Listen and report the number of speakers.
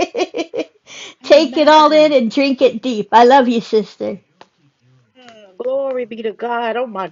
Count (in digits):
2